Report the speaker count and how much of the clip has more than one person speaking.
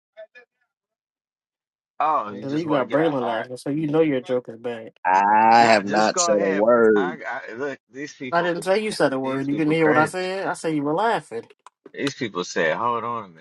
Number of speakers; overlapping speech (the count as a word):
three, about 26%